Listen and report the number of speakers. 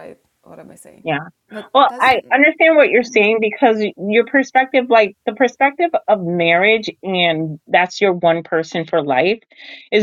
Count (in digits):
2